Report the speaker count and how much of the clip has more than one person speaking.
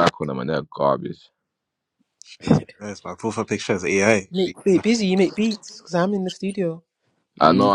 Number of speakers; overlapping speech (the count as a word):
three, about 5%